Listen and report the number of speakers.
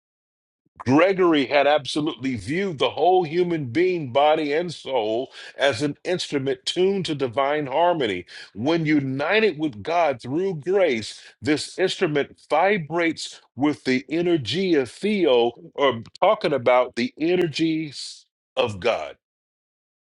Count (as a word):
one